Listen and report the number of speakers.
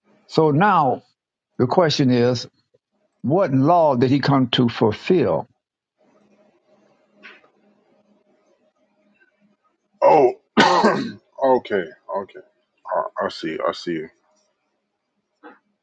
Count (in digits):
2